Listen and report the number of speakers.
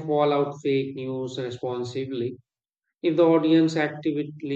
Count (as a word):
one